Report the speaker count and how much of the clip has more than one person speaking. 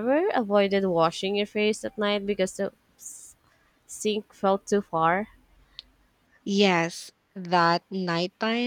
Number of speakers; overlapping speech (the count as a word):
two, no overlap